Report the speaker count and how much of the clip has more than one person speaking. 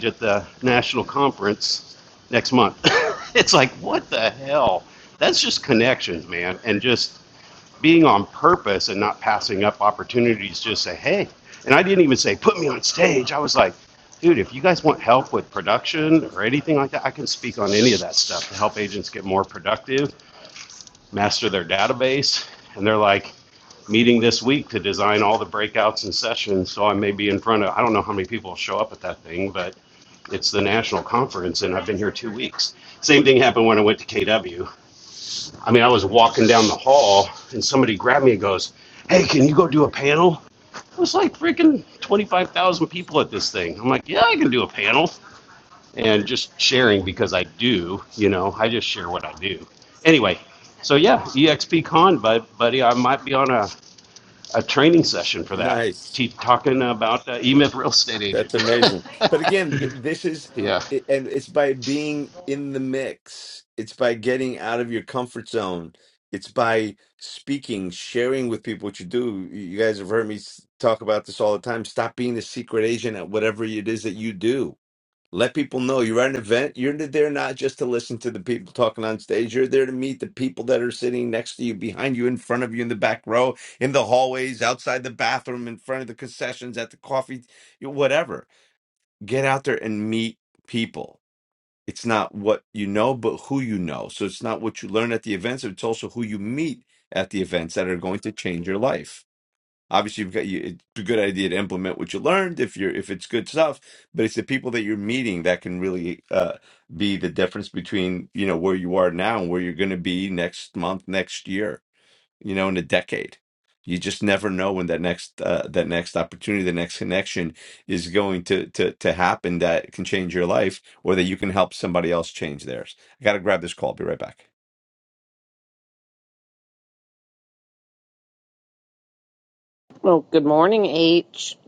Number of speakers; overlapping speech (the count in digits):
3, under 1%